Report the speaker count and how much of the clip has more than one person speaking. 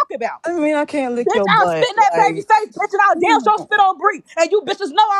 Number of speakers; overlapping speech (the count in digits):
2, about 37%